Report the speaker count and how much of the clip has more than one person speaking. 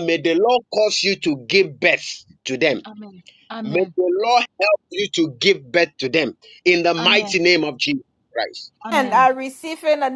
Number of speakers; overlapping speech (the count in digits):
3, about 10%